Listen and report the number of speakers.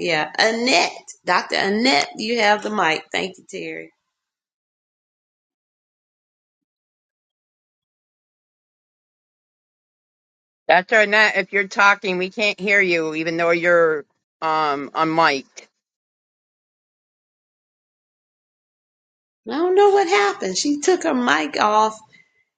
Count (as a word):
two